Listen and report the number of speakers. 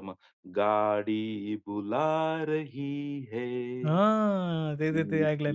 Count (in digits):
2